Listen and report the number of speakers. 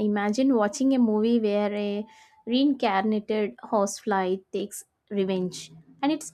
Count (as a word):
one